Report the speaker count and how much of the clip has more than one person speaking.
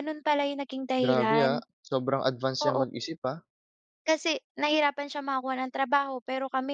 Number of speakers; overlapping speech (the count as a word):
two, about 12%